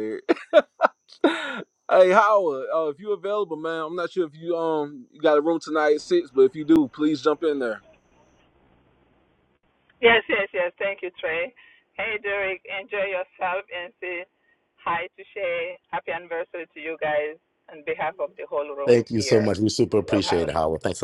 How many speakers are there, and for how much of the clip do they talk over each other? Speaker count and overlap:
three, about 5%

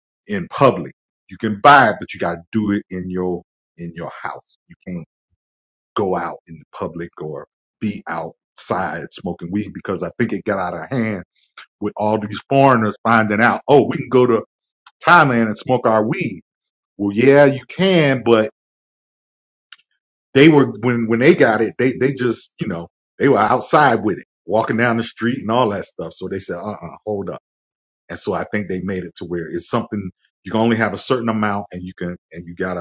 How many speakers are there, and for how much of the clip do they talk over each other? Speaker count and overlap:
one, no overlap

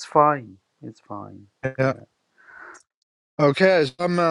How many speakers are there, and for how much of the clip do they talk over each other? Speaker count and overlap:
two, about 4%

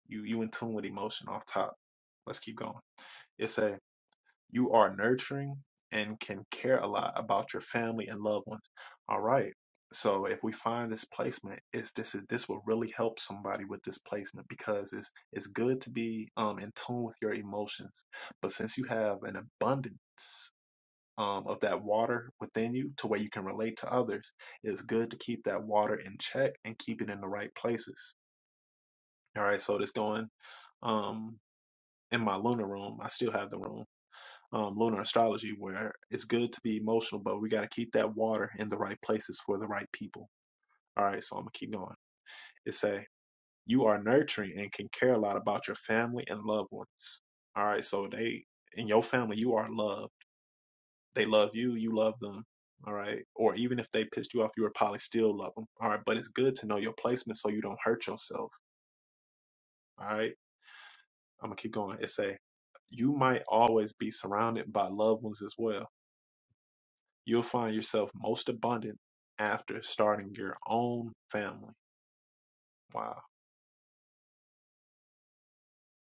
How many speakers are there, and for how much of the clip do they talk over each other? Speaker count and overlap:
one, no overlap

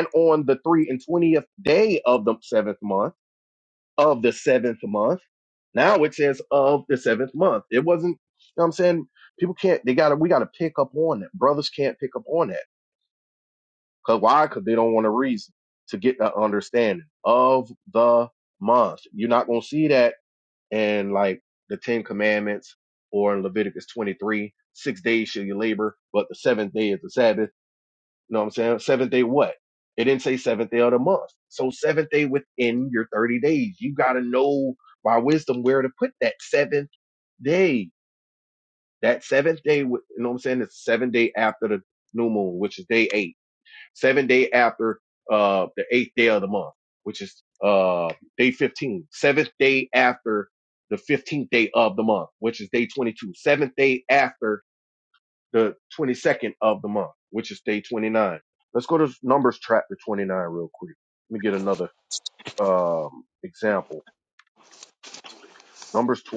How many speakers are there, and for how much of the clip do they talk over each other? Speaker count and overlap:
one, no overlap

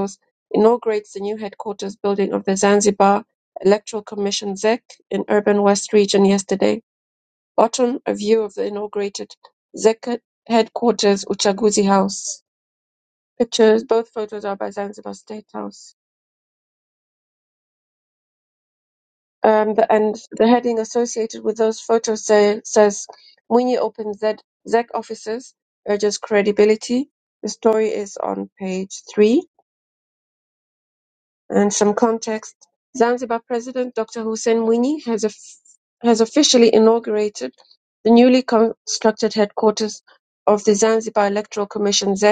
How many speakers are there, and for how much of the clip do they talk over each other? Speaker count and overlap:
one, no overlap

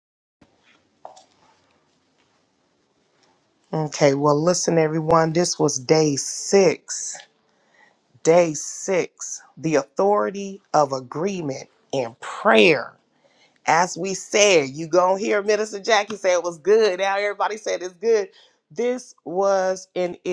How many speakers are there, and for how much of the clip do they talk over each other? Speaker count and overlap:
one, no overlap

